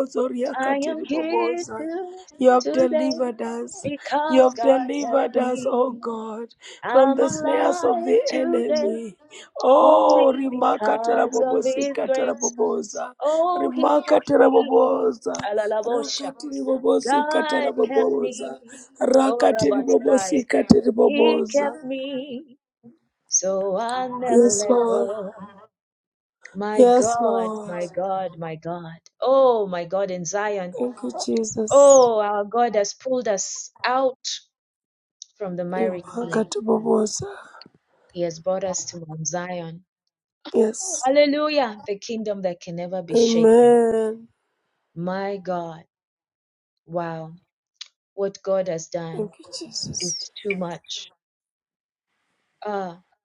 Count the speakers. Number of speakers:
2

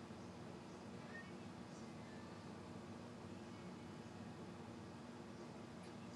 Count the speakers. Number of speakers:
0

